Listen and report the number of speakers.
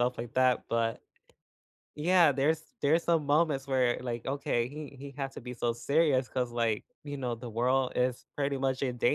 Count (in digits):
1